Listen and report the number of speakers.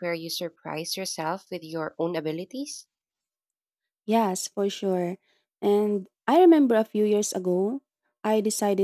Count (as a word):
two